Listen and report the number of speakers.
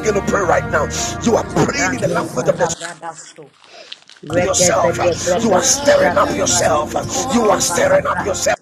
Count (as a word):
two